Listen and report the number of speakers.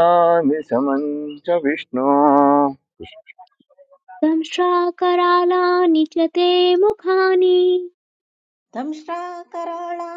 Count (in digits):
3